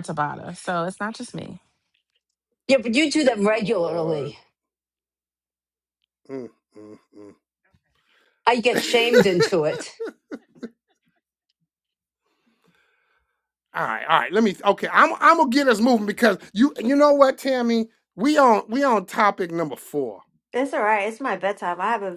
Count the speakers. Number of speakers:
4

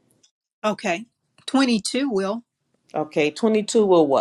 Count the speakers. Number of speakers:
2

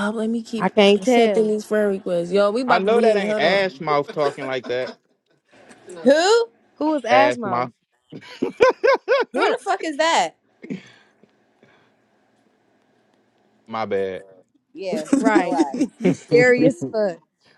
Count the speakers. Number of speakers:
4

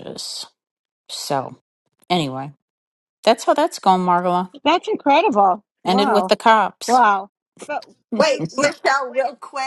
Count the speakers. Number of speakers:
3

